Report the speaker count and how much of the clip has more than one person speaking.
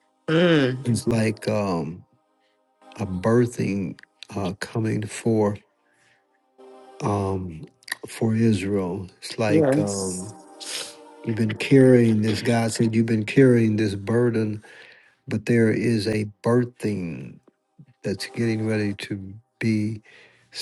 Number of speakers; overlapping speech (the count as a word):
two, about 4%